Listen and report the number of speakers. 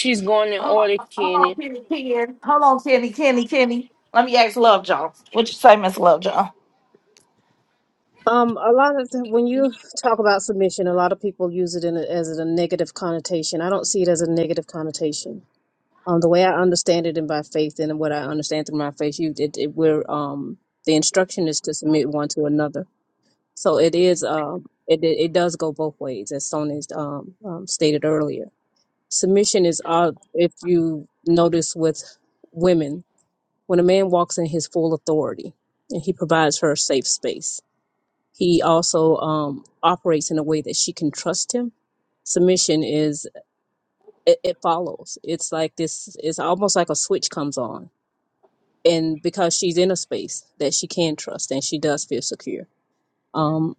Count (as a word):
three